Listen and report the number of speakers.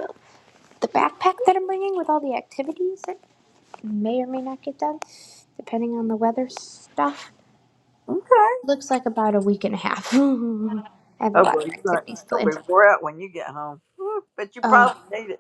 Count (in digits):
2